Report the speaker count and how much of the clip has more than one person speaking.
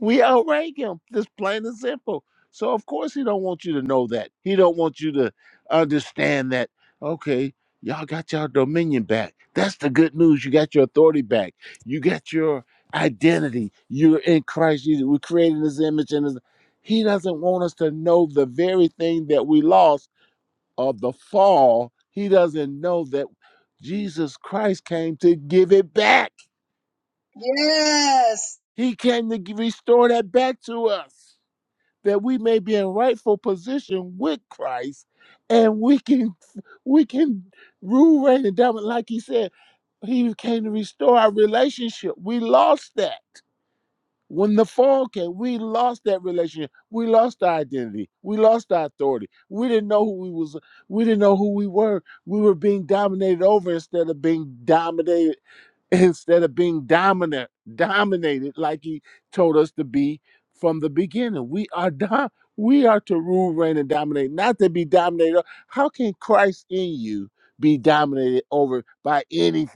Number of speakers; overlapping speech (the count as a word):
two, no overlap